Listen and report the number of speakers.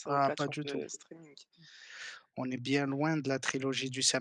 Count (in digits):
2